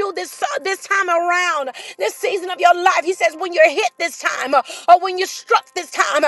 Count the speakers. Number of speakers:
1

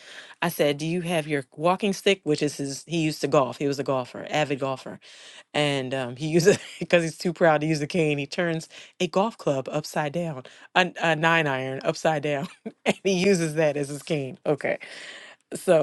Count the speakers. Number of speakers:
1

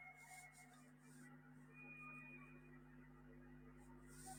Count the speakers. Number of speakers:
0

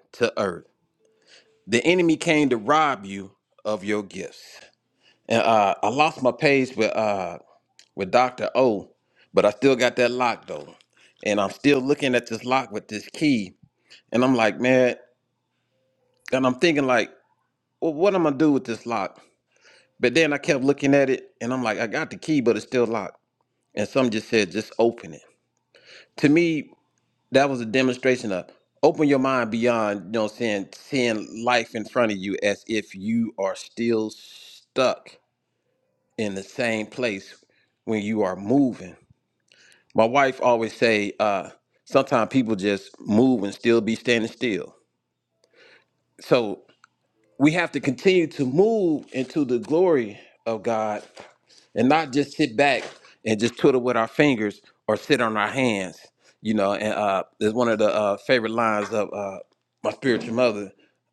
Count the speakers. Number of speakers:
1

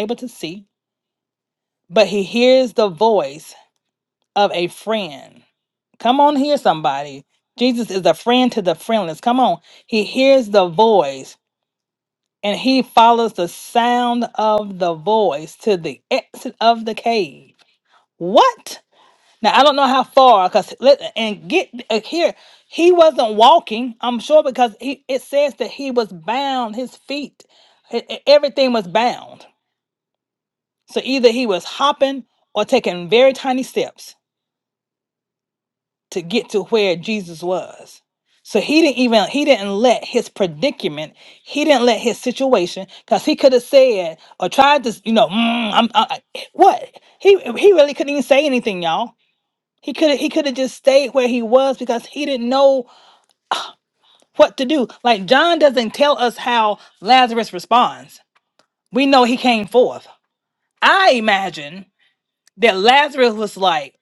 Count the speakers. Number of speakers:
1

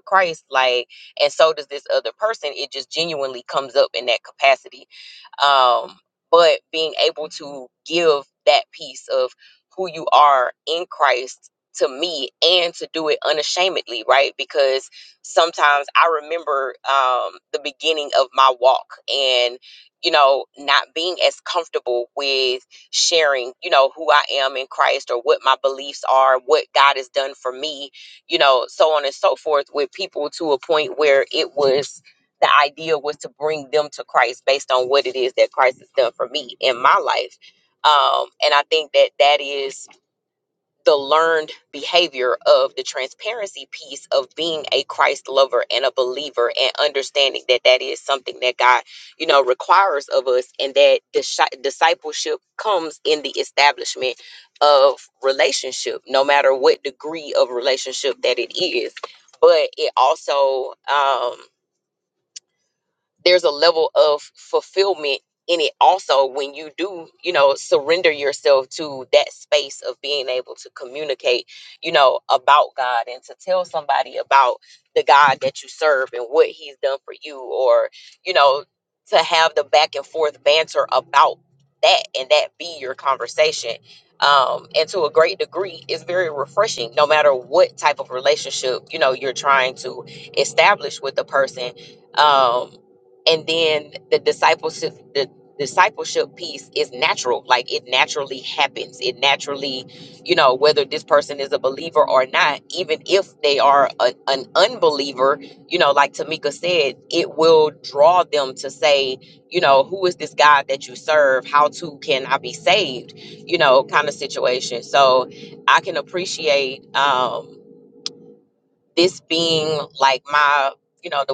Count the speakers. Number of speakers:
1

